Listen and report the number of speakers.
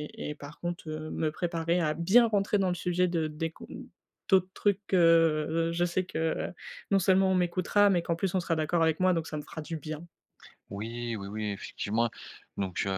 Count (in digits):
2